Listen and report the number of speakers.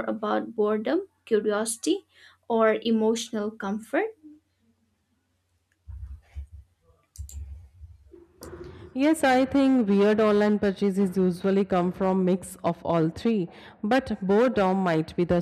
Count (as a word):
two